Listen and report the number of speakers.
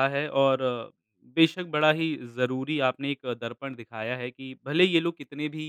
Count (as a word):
one